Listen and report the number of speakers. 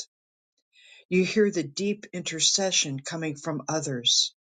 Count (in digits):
1